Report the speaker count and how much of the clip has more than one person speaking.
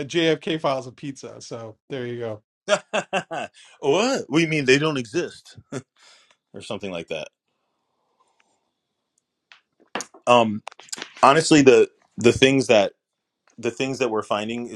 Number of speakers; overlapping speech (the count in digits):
2, no overlap